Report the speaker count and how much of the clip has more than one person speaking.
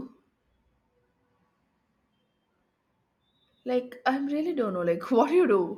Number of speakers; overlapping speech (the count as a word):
one, no overlap